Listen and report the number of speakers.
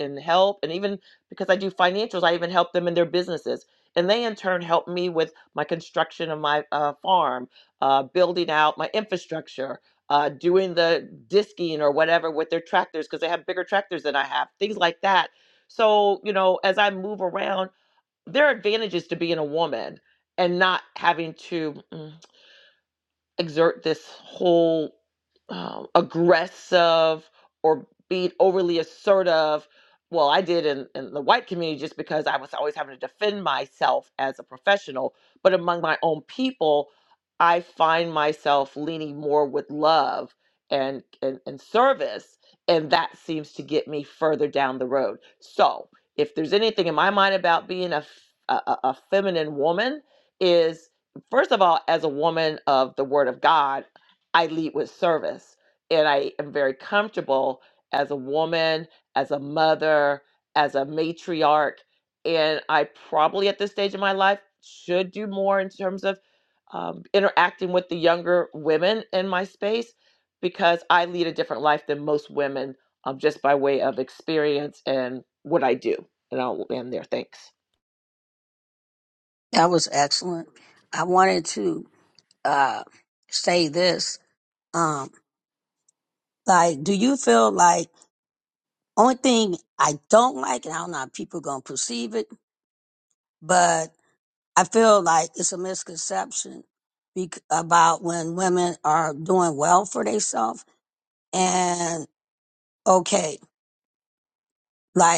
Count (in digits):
2